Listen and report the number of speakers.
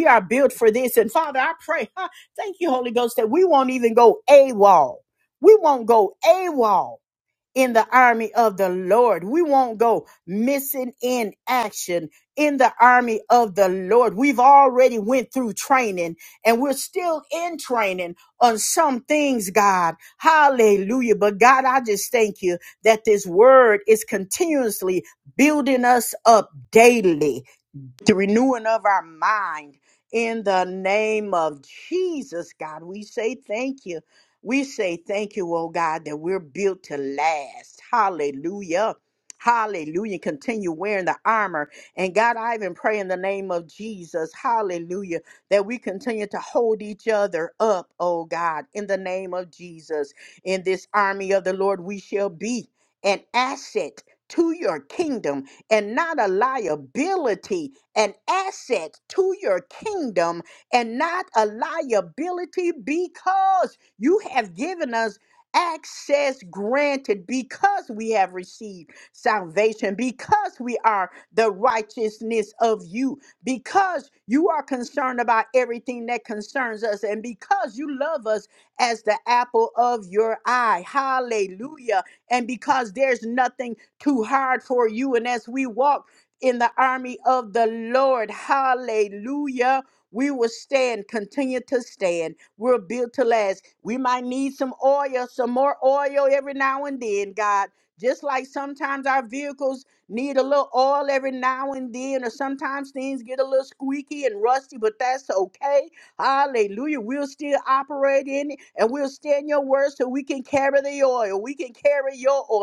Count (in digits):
1